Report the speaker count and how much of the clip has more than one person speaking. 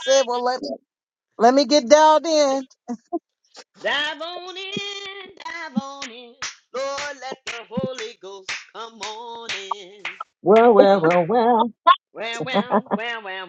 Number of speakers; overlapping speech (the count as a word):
three, about 2%